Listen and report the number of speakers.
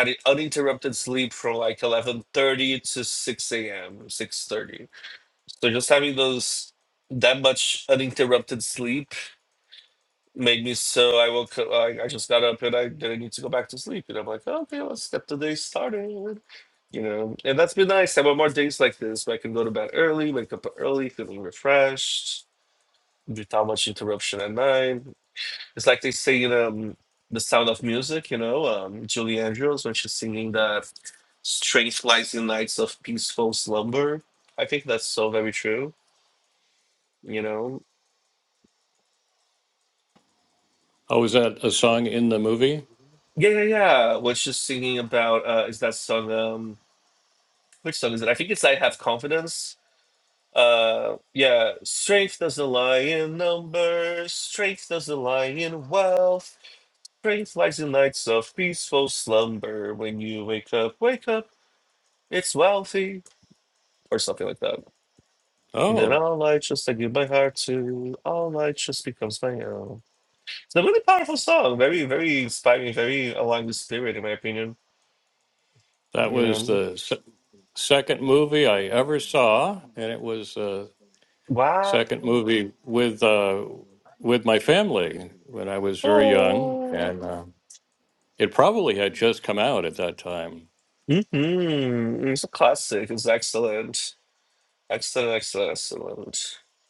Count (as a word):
two